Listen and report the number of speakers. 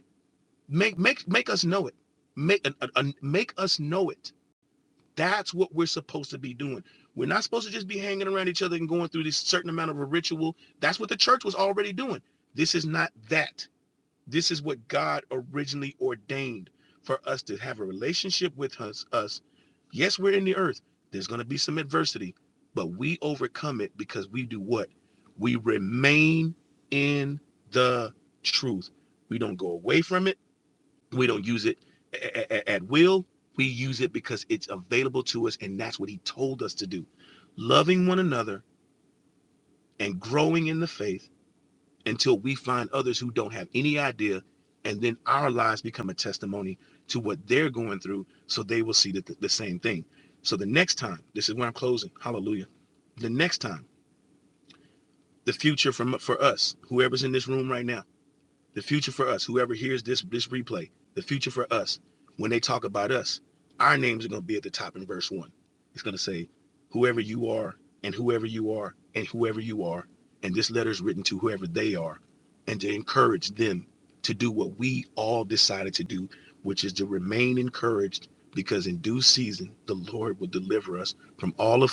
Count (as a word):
one